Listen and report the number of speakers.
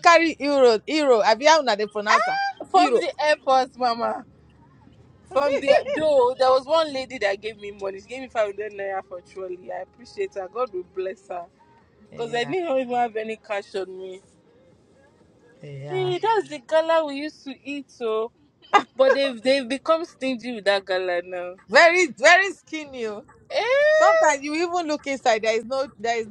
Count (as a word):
two